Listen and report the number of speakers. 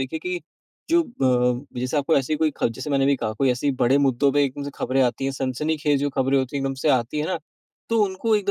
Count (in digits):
1